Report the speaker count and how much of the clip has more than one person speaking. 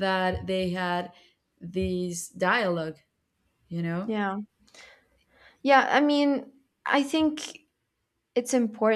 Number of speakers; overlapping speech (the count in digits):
2, under 1%